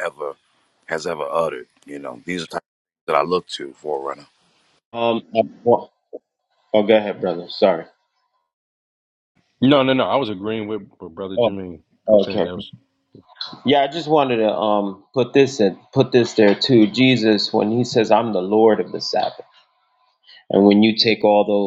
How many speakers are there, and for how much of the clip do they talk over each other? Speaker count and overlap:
3, about 3%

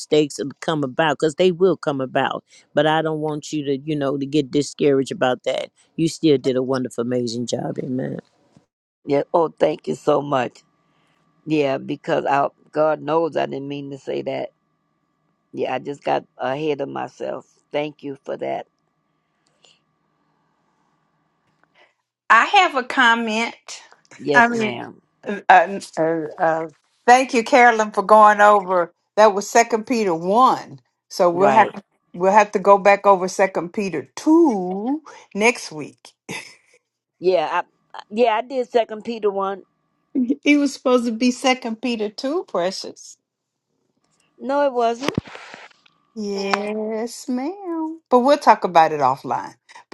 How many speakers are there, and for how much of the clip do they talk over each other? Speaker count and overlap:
3, about 2%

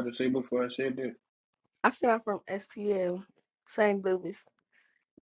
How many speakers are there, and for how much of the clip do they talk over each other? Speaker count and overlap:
2, no overlap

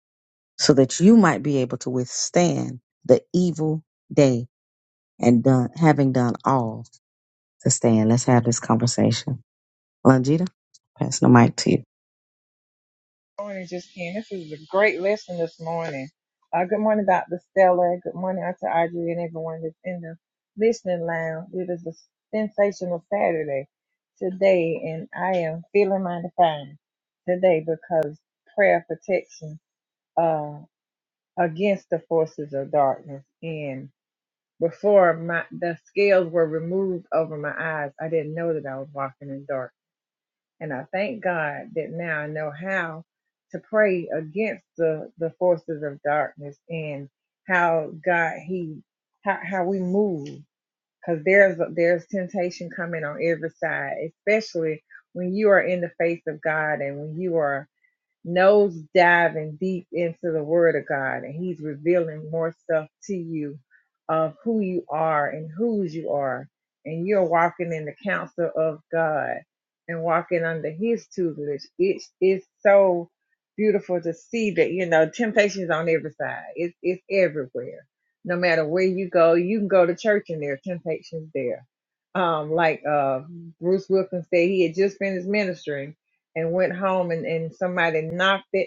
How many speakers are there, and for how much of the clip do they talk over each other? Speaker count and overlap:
2, no overlap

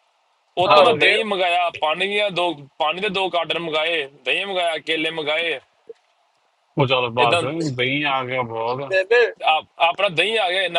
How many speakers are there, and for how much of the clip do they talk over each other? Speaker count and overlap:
3, about 8%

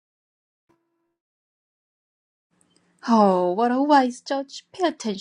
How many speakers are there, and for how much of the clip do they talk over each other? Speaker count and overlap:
1, no overlap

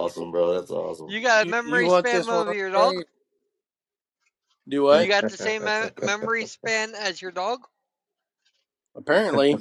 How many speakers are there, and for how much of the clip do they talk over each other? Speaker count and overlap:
3, about 20%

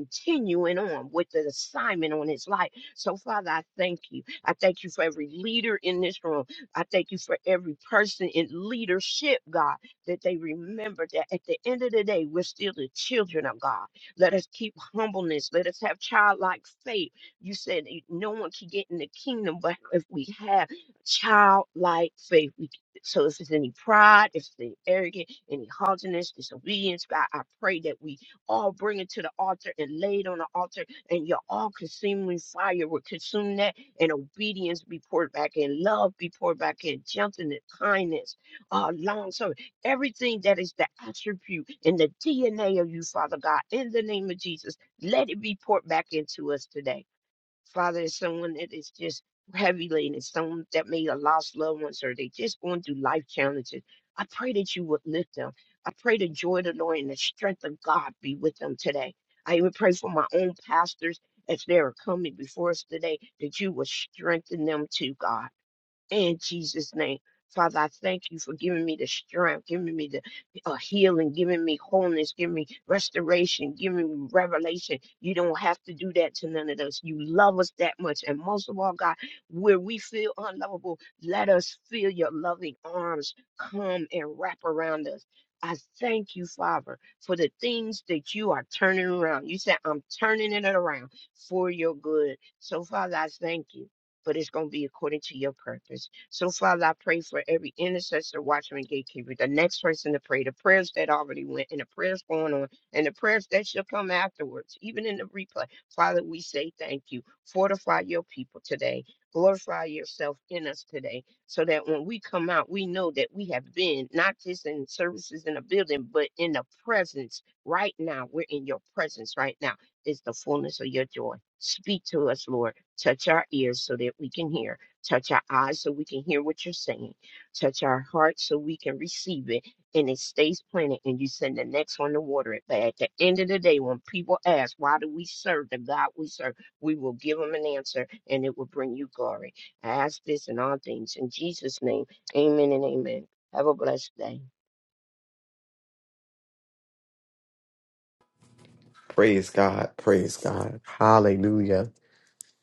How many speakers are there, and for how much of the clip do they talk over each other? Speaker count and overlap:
2, no overlap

